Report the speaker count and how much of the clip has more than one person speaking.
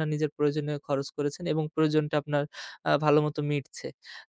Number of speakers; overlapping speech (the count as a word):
one, no overlap